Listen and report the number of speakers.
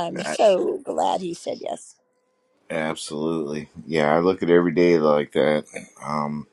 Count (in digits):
2